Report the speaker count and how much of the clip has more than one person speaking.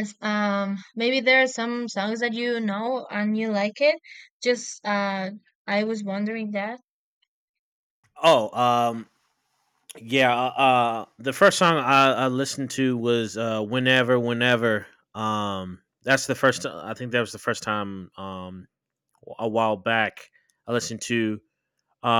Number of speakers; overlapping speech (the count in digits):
2, no overlap